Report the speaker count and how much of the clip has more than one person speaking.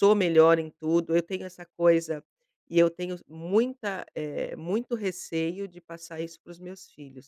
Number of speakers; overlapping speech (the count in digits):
1, no overlap